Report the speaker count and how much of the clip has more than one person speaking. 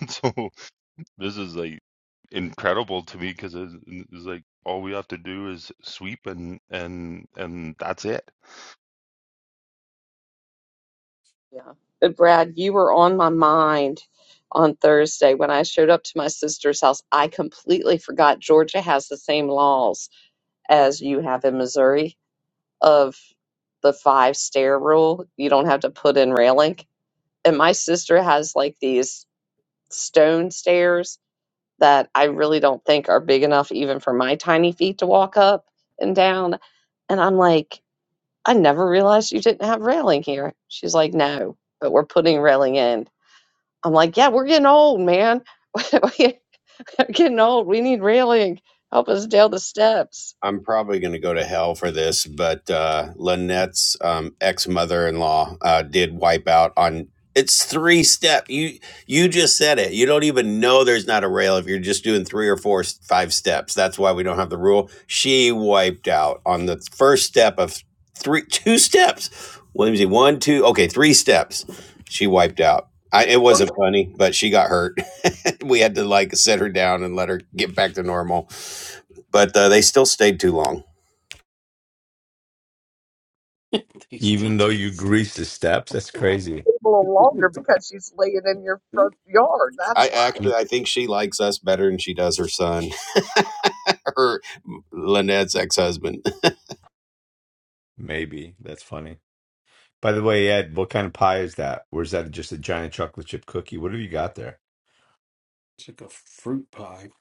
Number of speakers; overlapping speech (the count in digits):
5, about 2%